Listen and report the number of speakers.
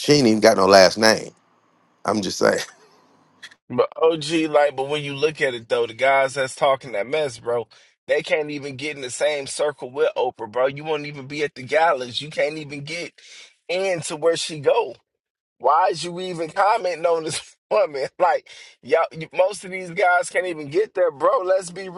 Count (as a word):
two